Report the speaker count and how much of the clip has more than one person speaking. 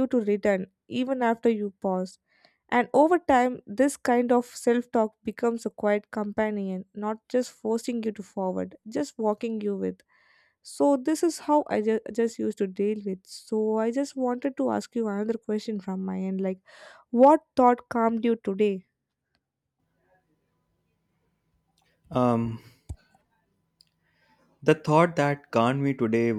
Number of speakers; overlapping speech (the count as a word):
two, no overlap